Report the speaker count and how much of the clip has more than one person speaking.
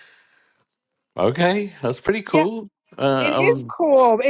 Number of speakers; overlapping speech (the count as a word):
two, about 15%